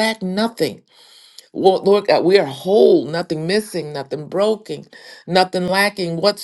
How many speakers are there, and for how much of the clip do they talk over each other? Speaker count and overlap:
1, no overlap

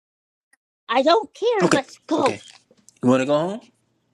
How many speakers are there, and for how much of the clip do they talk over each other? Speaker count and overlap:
2, about 10%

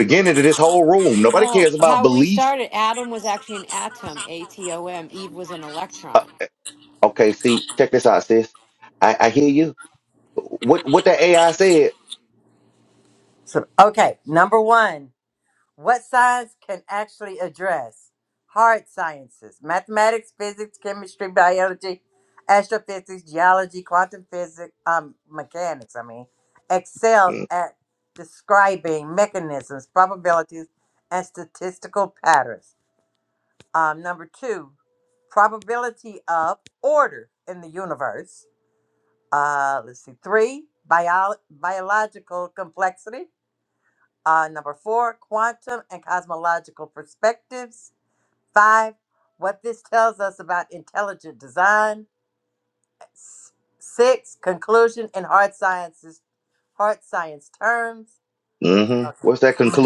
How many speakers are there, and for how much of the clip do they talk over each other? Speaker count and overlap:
3, about 3%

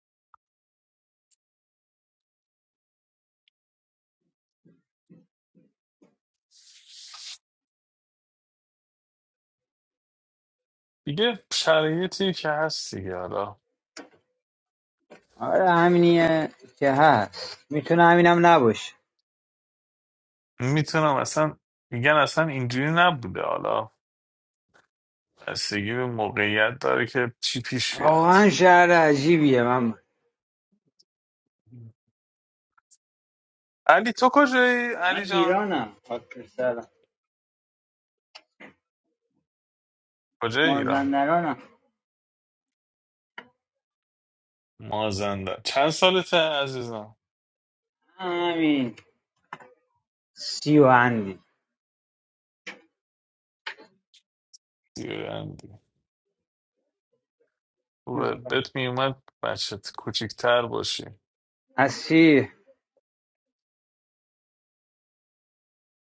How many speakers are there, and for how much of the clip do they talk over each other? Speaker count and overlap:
2, about 2%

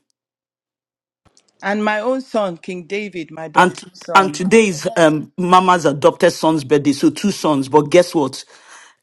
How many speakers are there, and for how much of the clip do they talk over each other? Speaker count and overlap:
2, about 7%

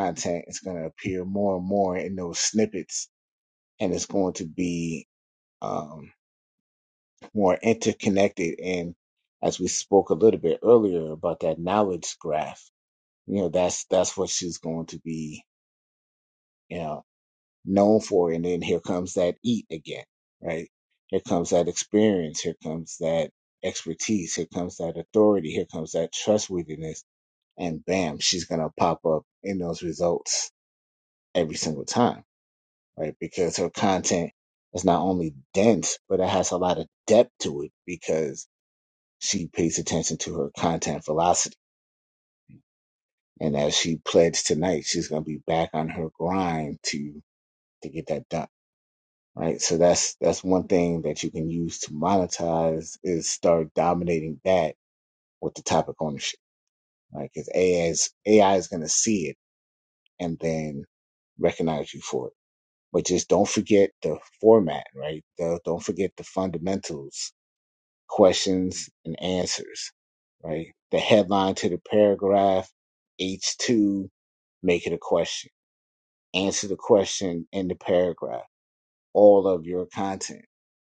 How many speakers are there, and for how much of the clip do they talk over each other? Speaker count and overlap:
1, no overlap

